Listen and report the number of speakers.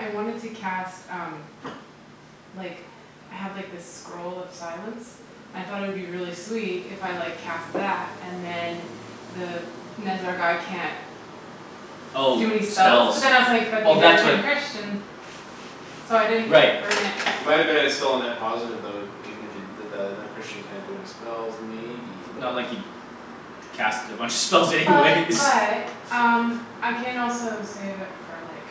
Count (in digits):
3